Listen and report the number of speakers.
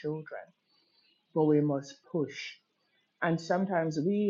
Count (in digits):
1